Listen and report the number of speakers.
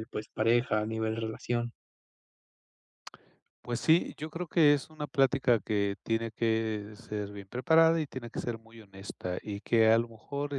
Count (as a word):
two